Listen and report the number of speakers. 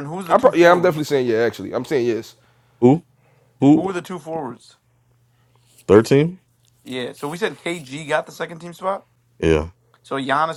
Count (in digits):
3